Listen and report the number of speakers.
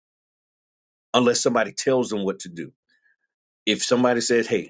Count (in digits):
1